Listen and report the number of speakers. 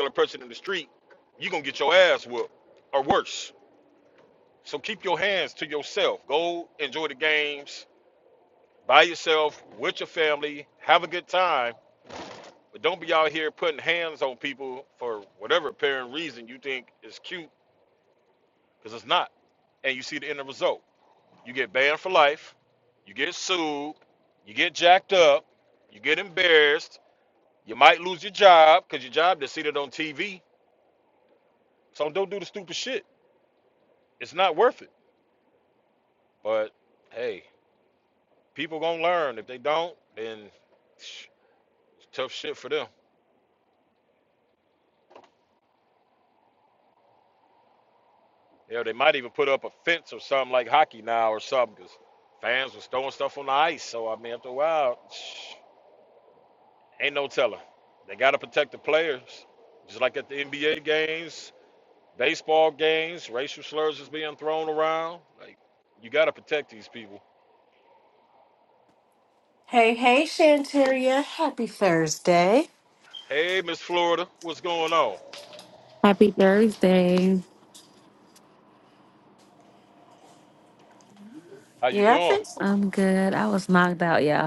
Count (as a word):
three